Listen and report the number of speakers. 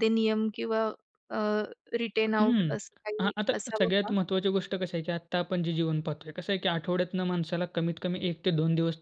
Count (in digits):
2